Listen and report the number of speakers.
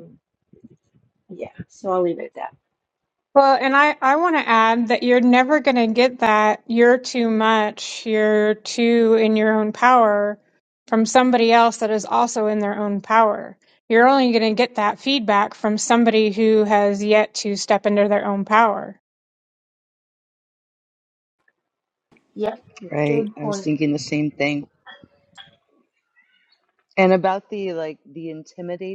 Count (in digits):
3